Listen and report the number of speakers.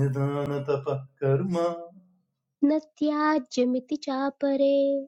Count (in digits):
2